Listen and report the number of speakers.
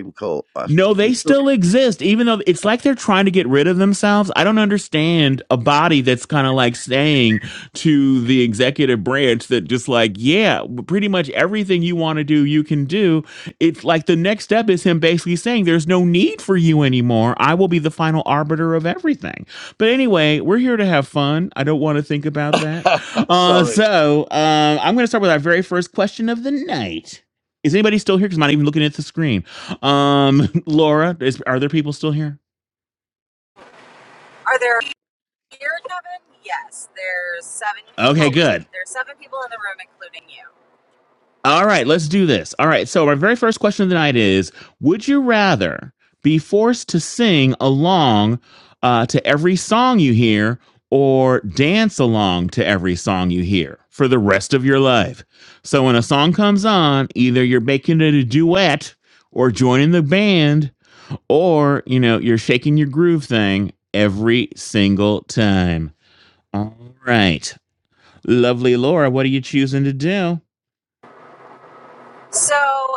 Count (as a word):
three